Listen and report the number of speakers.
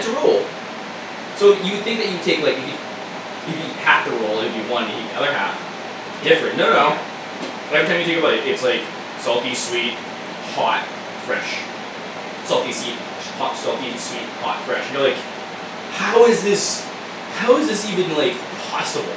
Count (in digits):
1